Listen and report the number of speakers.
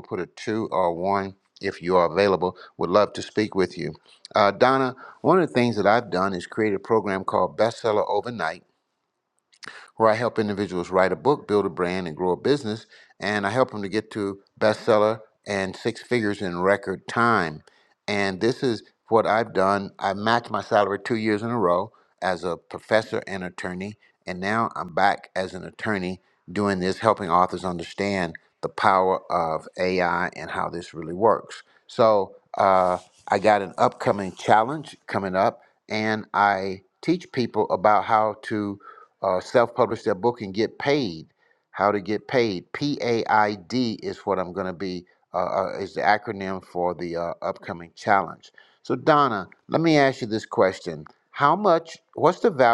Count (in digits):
1